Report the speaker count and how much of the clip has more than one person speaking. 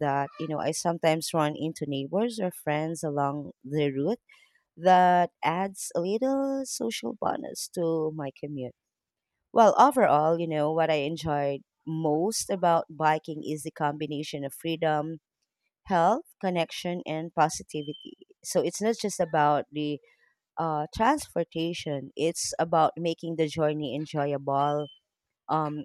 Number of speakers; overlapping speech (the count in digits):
1, no overlap